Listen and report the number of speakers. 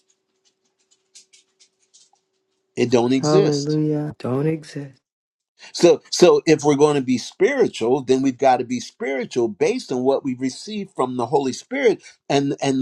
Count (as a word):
two